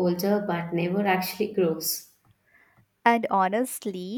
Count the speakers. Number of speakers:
2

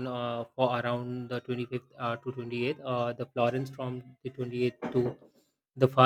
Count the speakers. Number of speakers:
1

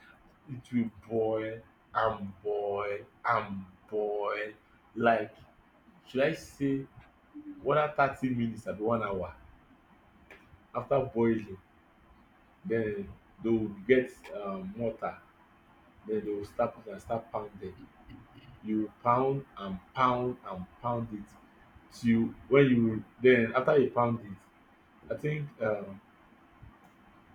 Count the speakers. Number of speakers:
1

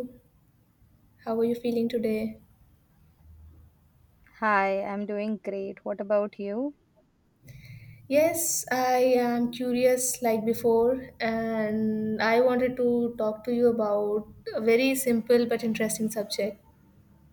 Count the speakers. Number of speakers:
2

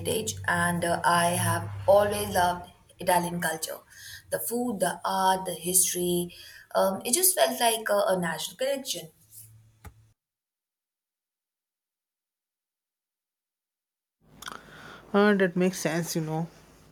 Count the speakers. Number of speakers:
2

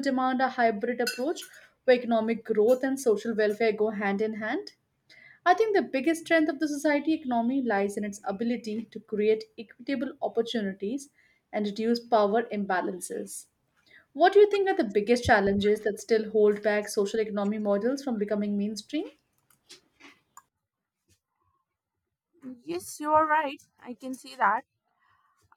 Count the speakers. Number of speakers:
2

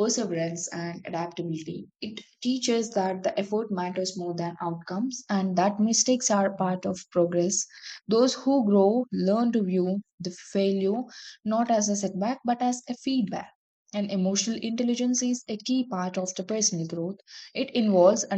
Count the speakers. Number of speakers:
1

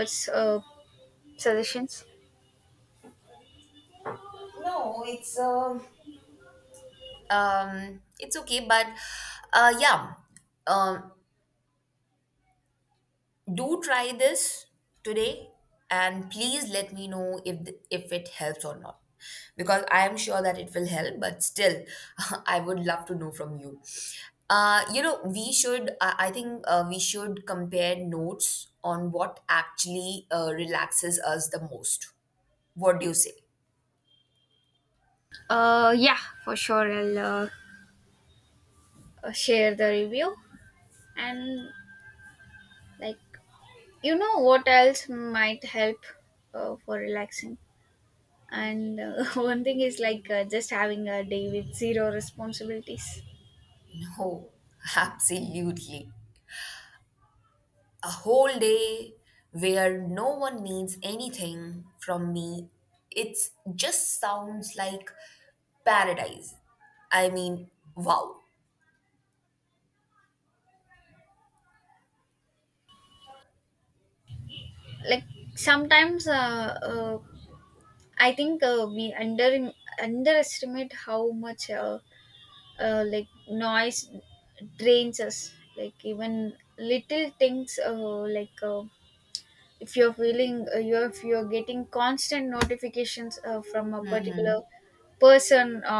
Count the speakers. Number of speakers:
2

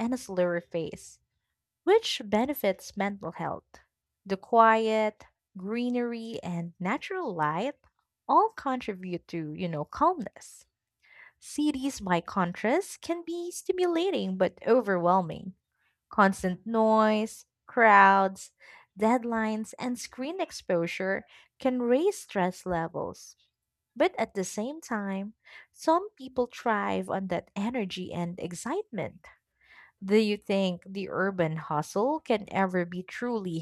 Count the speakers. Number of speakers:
1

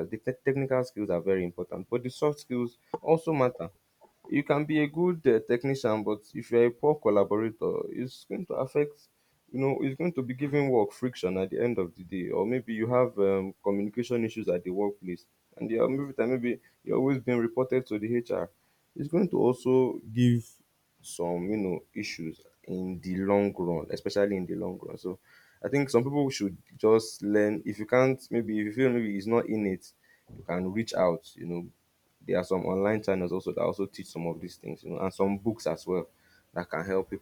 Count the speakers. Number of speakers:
1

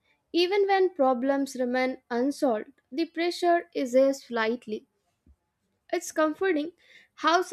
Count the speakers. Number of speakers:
1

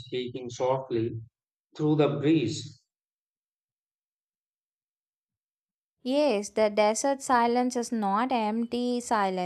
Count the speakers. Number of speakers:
2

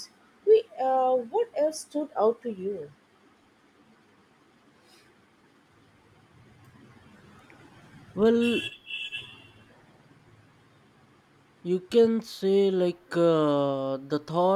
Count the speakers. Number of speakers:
2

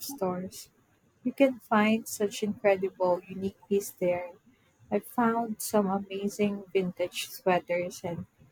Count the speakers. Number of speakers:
1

